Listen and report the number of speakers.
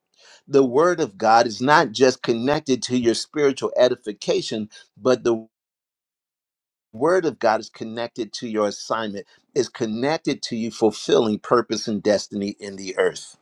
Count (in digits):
1